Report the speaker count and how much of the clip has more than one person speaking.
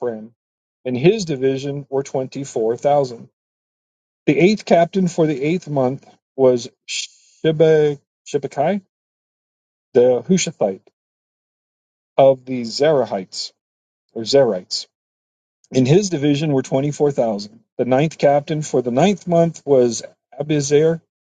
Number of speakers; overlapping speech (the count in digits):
1, no overlap